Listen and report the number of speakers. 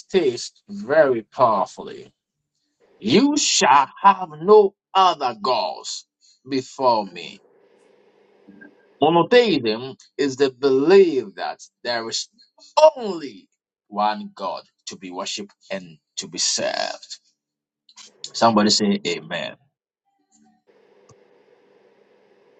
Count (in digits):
1